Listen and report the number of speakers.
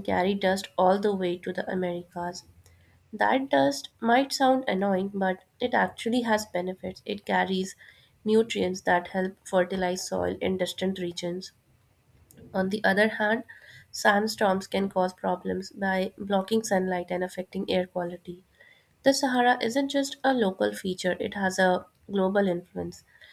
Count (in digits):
1